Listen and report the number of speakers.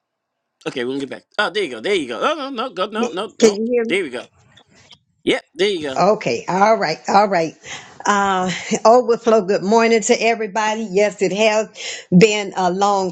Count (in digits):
2